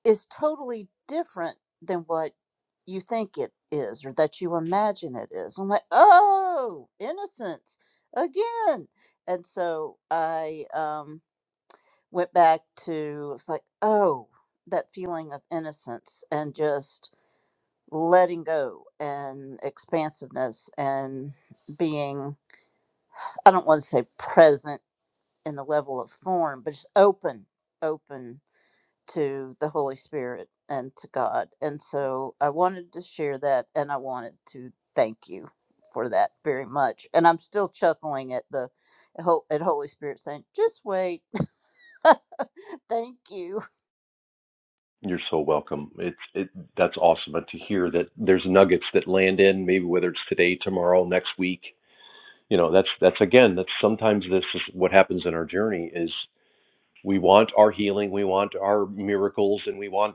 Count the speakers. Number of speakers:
two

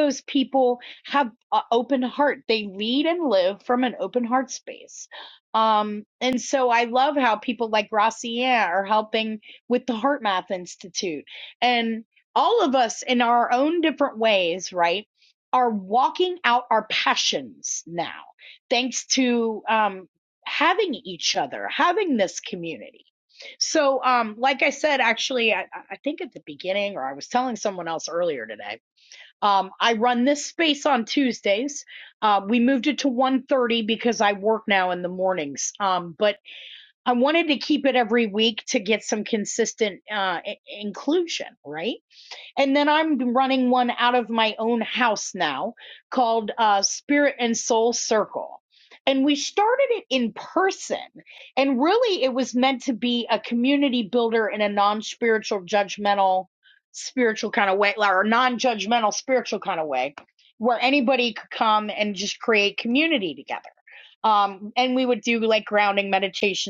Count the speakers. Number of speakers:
one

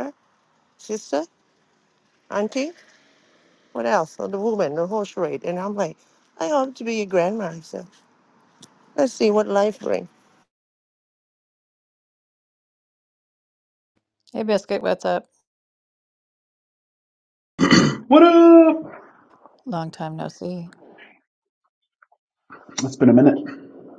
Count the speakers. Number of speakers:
three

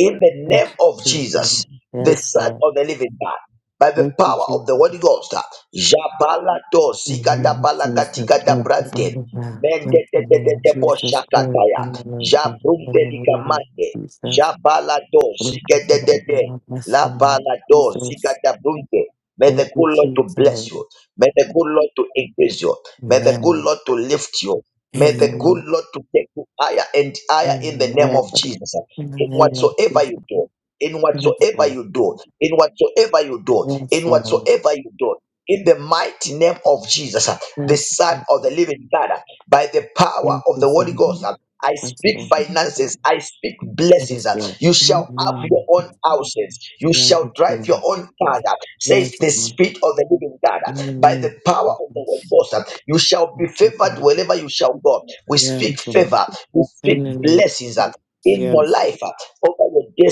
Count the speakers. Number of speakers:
two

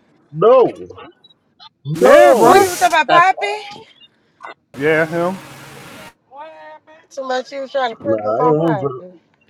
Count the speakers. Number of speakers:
three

